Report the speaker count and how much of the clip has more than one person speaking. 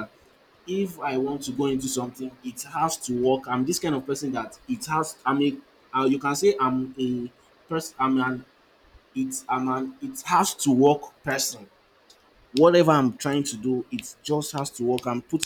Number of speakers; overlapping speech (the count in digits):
1, no overlap